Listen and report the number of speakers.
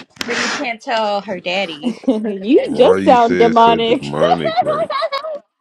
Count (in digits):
3